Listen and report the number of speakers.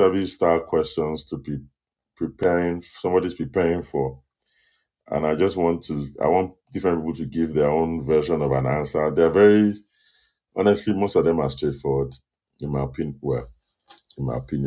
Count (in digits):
1